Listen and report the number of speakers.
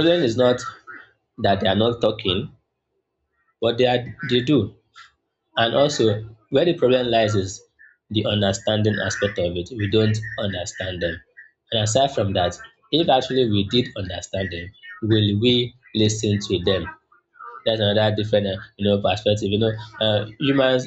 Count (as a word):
one